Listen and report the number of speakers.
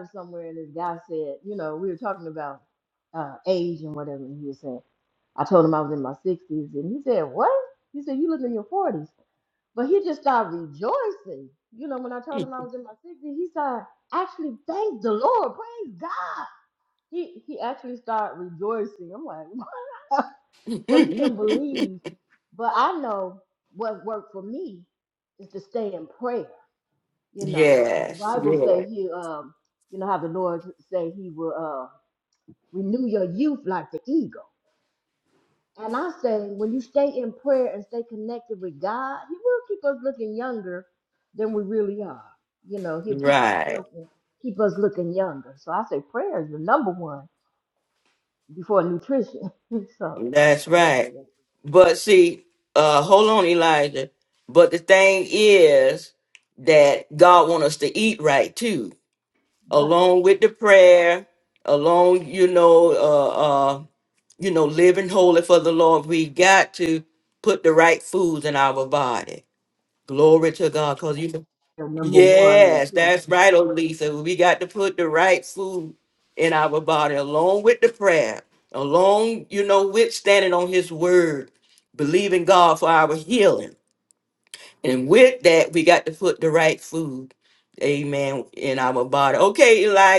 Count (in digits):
2